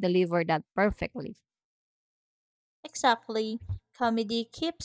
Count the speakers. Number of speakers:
2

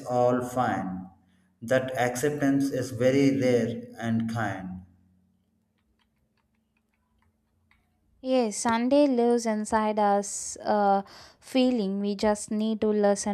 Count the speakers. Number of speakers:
2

